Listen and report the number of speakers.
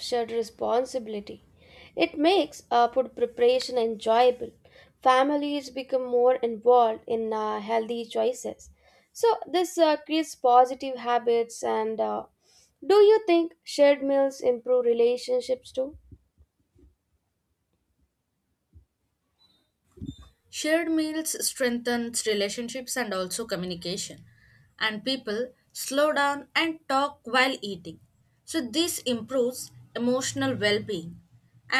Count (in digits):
2